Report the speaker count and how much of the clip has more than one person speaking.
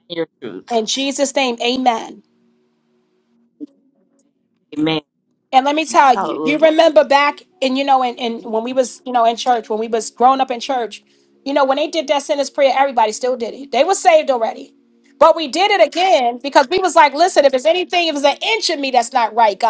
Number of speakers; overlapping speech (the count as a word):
two, about 5%